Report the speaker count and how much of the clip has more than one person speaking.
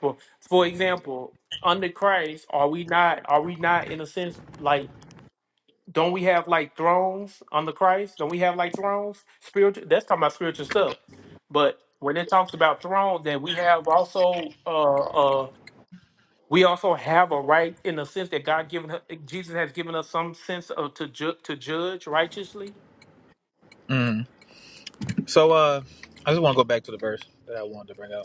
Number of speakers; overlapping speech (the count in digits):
2, no overlap